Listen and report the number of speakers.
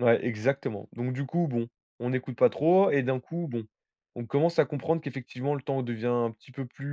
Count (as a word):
one